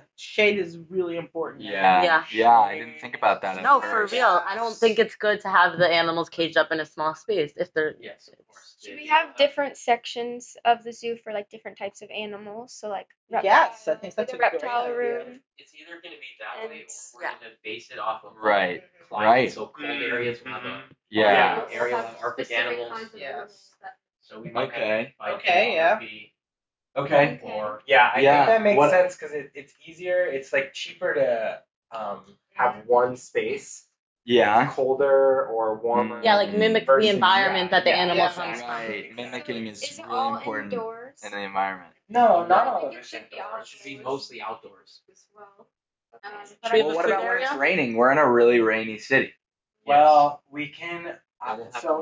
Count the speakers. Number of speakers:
7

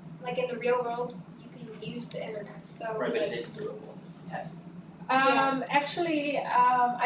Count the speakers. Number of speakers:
3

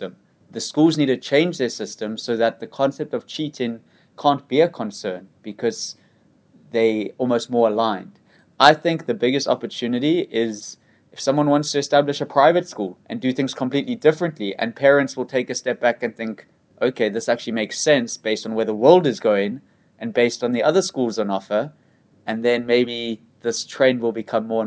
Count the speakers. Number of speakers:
1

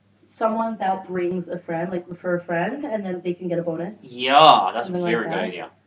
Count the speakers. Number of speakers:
2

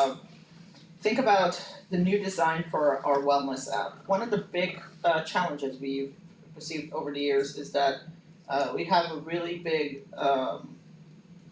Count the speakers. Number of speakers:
1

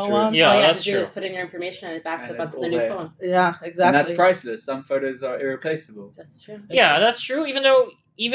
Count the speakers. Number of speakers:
4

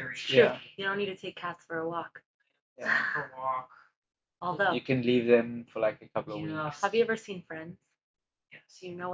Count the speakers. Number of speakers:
3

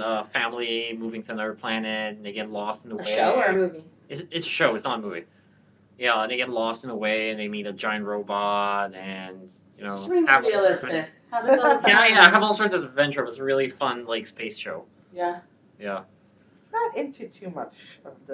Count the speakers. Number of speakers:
3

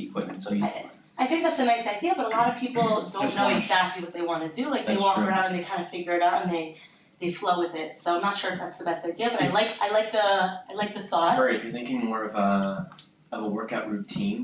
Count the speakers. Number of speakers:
3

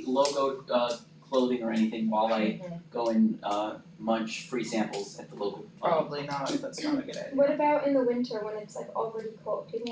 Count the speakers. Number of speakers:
3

